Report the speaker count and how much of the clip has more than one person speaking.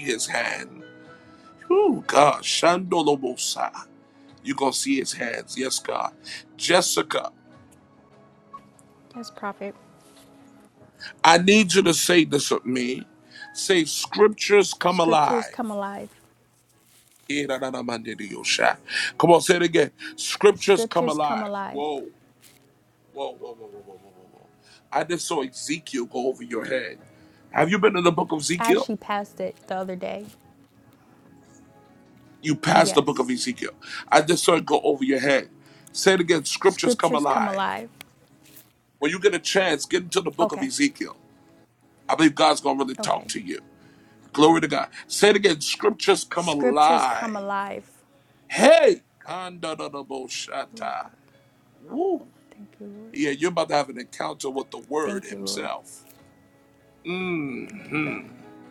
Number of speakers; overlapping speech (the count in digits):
2, about 10%